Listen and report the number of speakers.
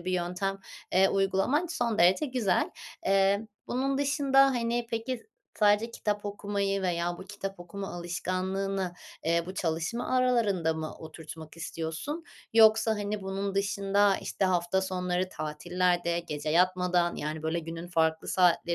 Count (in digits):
1